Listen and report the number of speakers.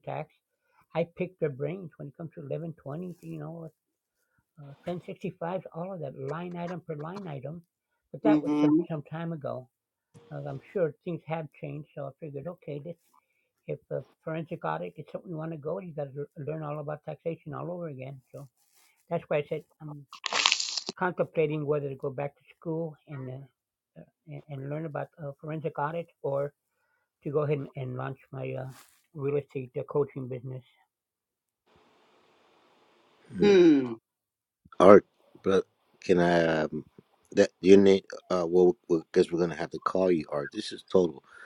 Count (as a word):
three